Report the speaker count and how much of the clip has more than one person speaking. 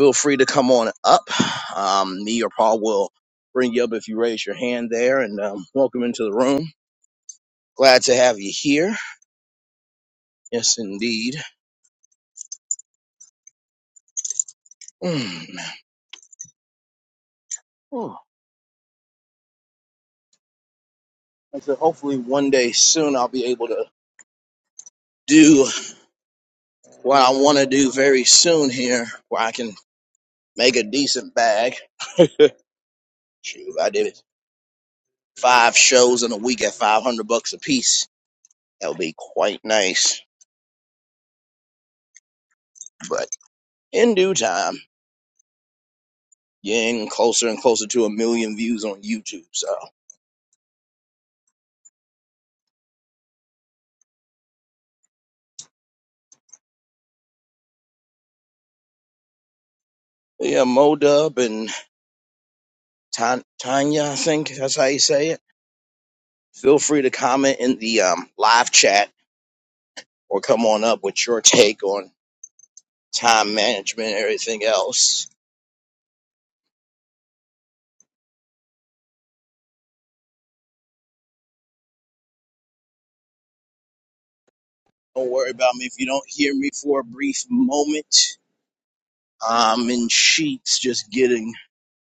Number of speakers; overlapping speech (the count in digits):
1, no overlap